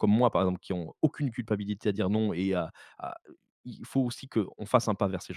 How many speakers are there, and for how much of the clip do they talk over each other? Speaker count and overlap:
one, no overlap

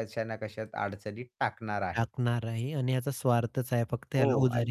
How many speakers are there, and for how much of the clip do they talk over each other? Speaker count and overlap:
two, about 11%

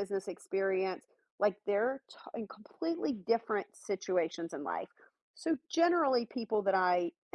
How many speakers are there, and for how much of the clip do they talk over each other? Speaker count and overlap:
one, no overlap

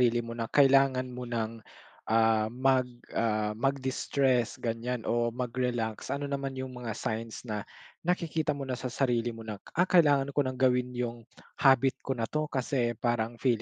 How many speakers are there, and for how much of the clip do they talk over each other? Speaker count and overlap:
one, no overlap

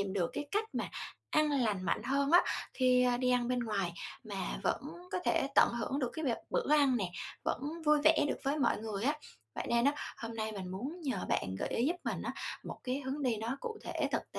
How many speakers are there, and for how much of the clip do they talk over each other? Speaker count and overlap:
one, no overlap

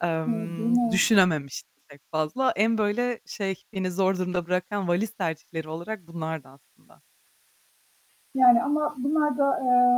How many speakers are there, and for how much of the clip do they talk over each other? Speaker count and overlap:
two, about 8%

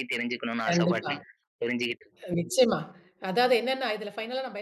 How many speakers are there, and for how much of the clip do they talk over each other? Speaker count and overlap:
two, about 11%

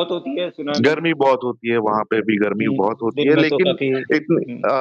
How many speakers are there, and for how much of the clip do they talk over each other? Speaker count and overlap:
two, about 23%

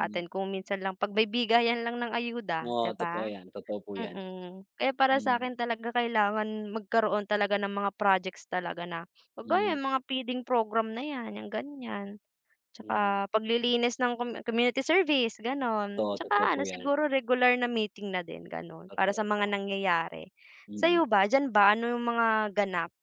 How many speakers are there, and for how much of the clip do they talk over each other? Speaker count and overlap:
two, about 16%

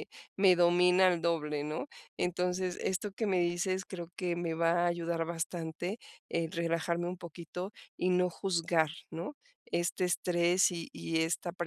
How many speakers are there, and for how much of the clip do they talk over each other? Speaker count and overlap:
one, no overlap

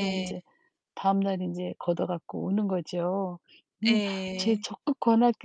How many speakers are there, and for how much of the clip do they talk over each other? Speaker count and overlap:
two, about 14%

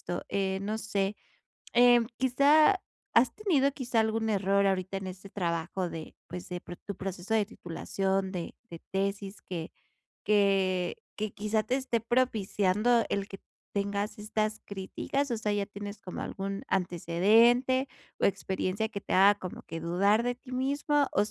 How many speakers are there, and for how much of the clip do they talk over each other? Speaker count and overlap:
one, no overlap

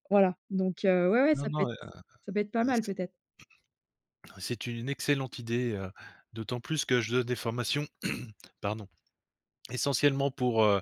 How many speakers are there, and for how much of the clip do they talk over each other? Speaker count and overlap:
two, about 5%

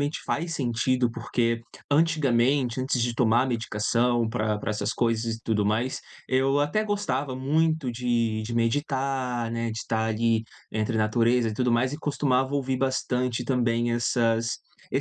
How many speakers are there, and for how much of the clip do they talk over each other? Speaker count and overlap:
one, no overlap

